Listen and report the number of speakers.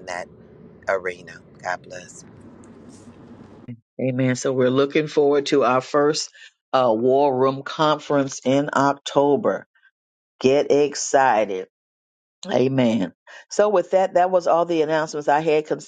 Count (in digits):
2